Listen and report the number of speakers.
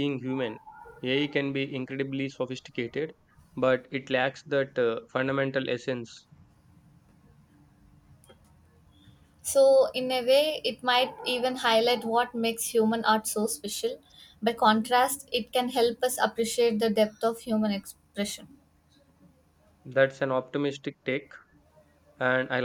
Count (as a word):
two